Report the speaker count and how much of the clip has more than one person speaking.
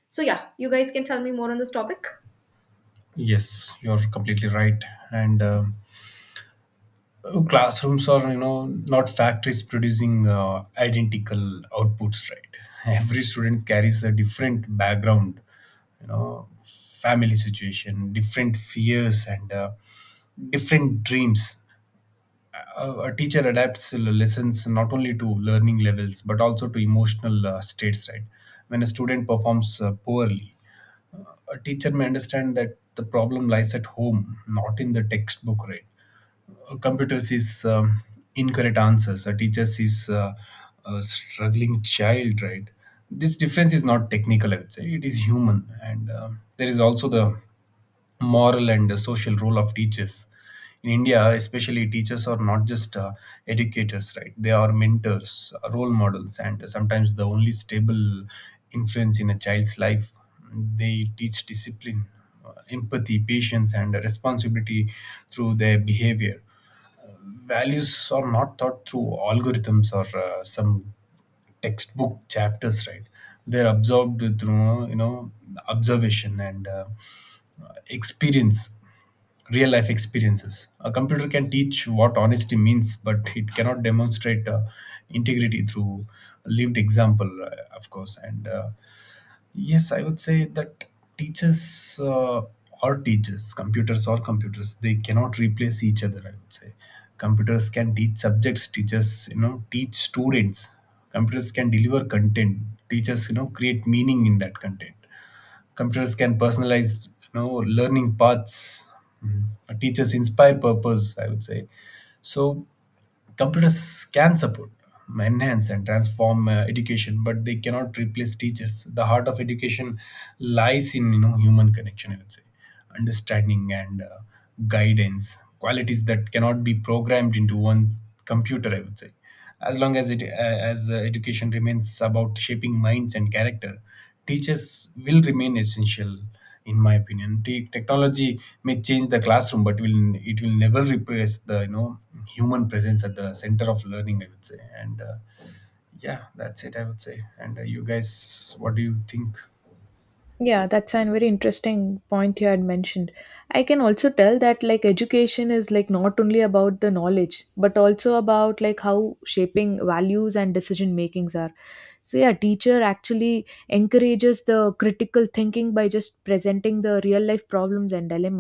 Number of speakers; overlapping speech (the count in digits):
3, no overlap